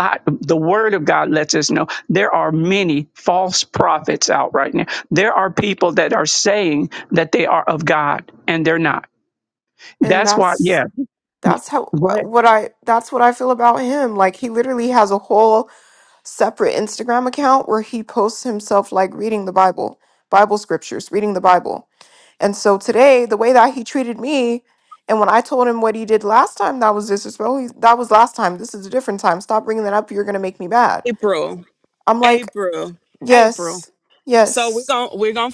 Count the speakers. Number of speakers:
3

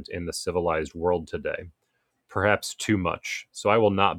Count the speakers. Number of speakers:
1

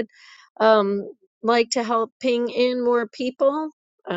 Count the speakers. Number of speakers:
1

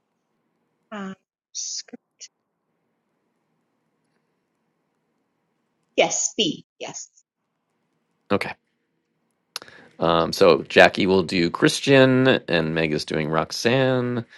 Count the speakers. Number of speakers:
2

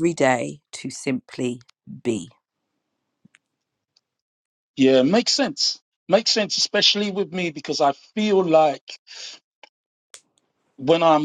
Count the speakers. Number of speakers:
2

